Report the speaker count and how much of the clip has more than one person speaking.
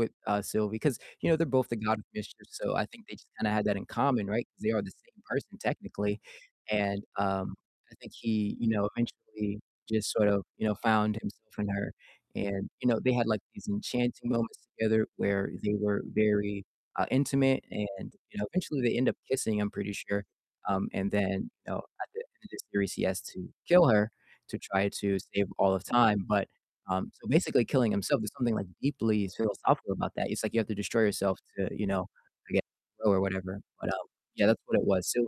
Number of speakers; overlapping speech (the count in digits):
1, no overlap